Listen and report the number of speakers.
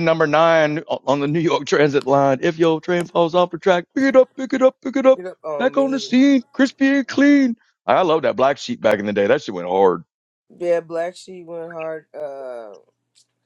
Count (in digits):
2